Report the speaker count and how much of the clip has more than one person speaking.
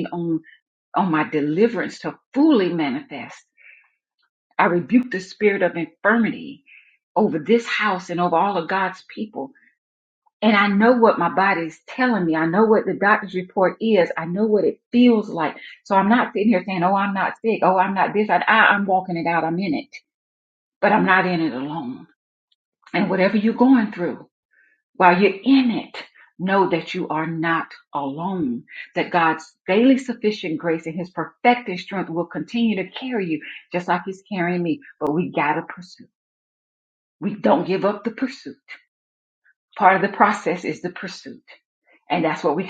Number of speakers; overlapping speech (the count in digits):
1, no overlap